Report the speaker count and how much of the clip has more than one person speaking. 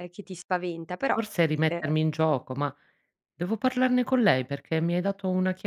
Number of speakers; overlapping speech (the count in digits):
2, about 3%